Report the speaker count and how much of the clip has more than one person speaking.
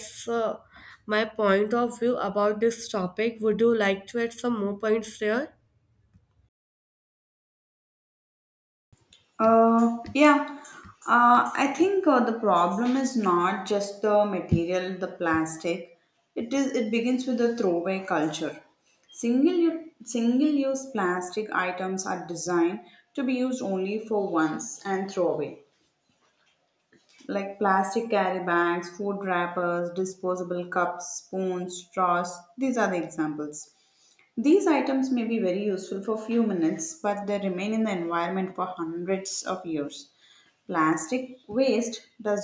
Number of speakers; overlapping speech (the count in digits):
2, no overlap